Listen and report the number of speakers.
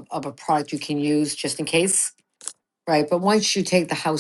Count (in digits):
1